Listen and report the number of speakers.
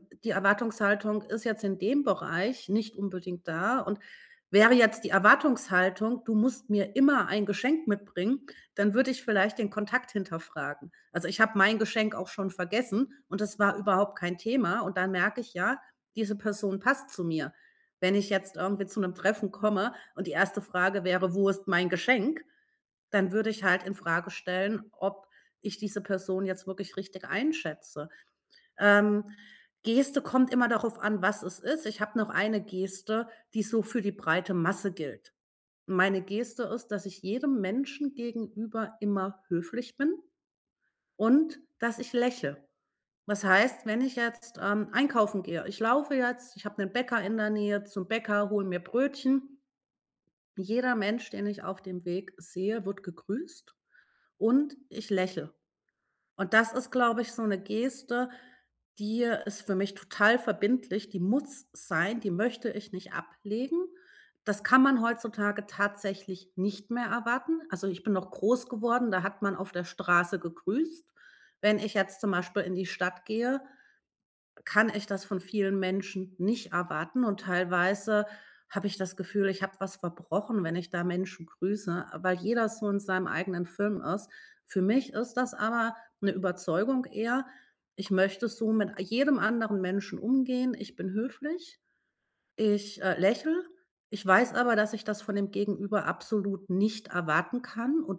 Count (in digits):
1